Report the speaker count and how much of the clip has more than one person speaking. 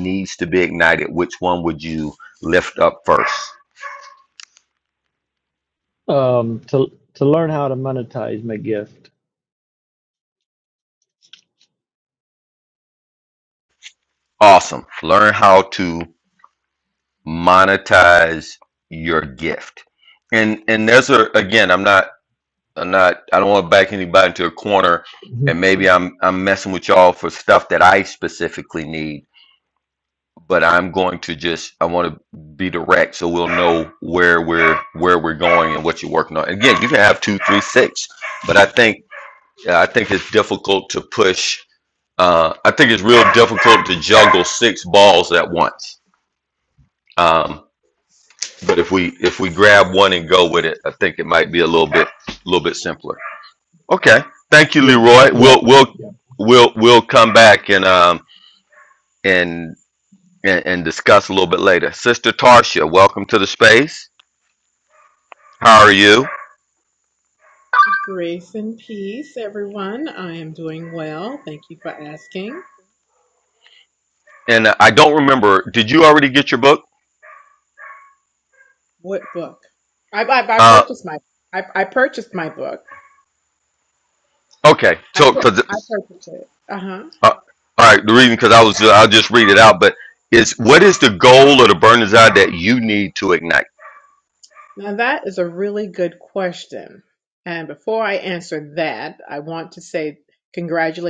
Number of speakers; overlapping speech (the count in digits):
3, about 1%